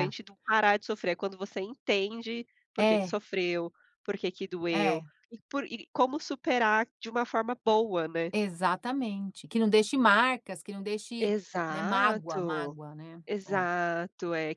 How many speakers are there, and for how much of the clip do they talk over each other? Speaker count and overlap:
2, about 12%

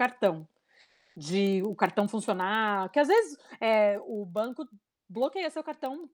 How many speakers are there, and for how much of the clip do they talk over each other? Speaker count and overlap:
1, no overlap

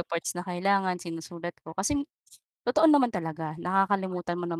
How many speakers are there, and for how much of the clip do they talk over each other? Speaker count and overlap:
1, no overlap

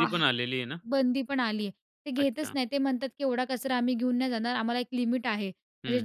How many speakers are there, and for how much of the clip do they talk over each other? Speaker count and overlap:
2, about 12%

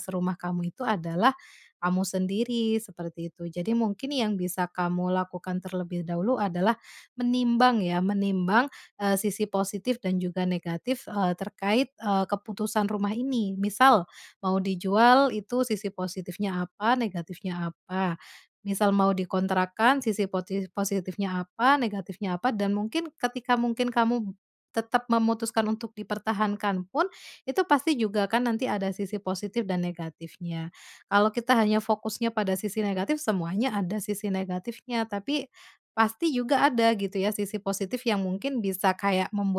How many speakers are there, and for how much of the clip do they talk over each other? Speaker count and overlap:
1, no overlap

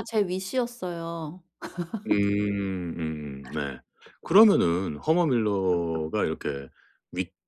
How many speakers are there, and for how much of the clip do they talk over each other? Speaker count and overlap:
2, no overlap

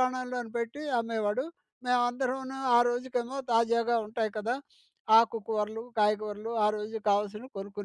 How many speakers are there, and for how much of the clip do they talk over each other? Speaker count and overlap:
1, no overlap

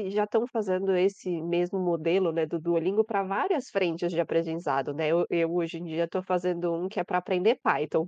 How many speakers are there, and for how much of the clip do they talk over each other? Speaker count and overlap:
1, no overlap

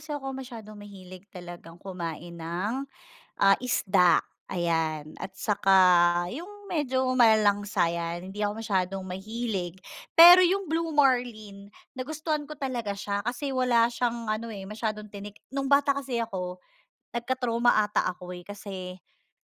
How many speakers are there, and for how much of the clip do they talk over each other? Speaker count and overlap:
1, no overlap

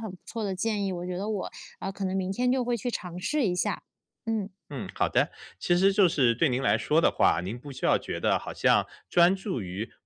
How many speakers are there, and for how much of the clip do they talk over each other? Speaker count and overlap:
2, no overlap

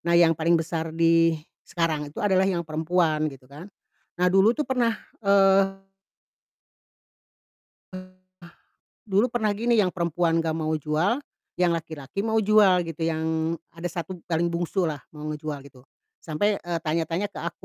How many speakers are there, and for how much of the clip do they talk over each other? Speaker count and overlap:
1, no overlap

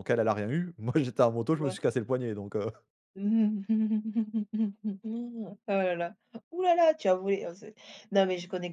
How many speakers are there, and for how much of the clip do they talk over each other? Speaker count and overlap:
2, about 2%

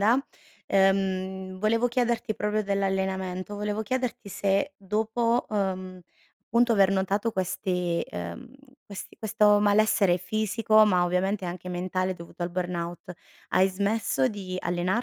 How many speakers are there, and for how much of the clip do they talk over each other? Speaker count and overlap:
1, no overlap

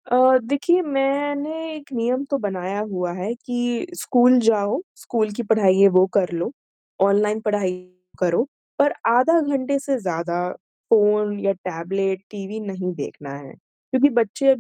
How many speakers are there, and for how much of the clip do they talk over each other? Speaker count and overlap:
1, no overlap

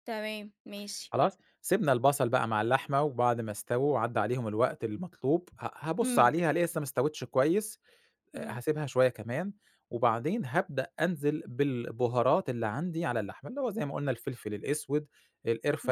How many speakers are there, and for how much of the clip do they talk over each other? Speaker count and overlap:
2, about 4%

